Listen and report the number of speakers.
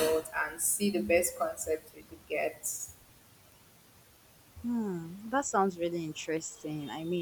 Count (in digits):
2